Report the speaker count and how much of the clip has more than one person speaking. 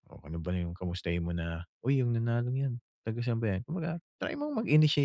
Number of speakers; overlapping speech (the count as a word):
one, no overlap